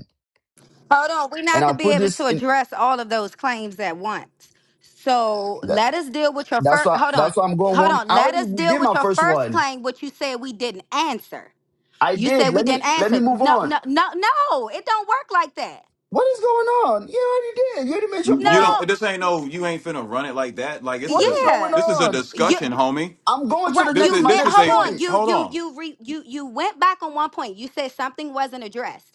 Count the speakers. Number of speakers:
3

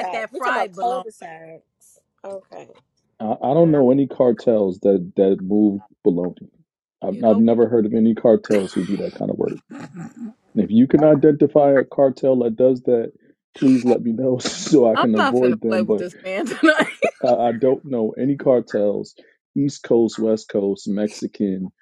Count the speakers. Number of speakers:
3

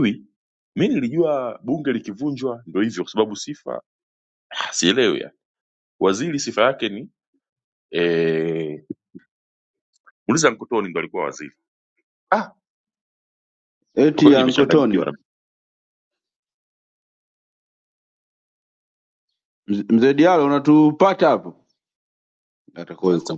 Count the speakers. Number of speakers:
2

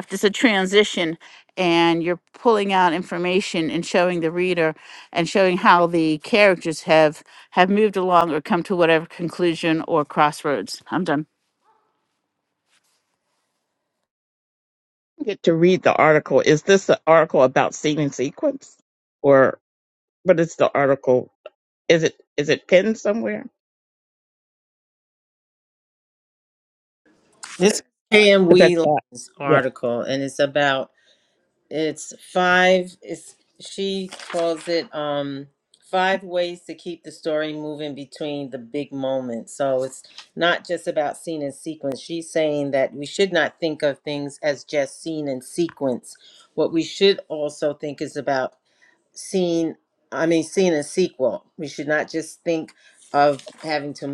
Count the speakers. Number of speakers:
3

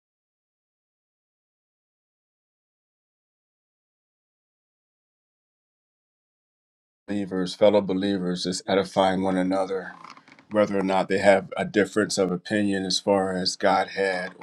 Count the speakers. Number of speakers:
1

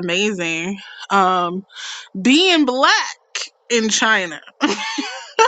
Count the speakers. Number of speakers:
1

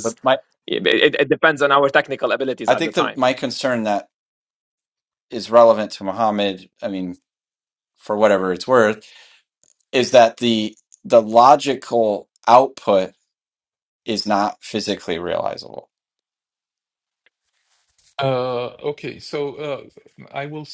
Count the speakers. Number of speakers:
3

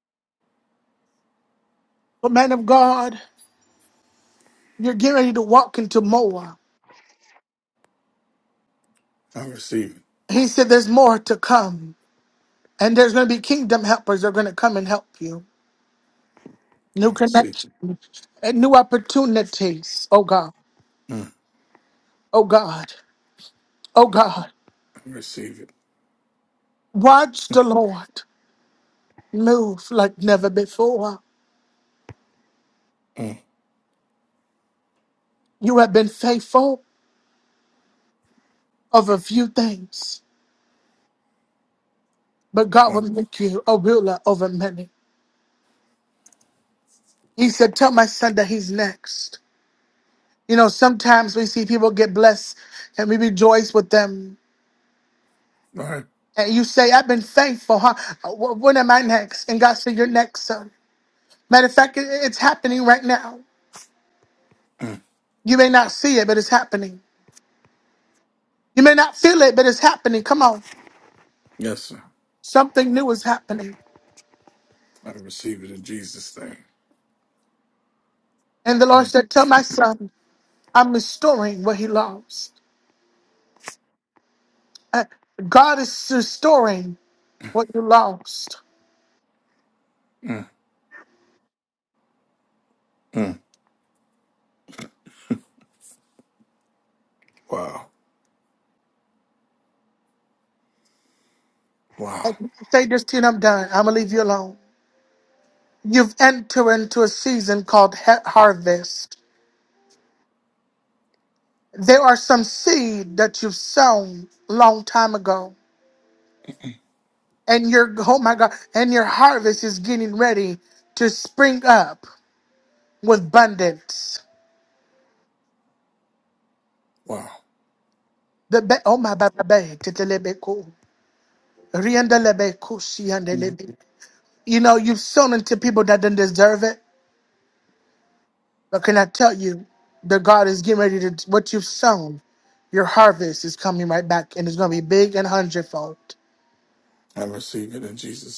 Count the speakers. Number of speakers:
2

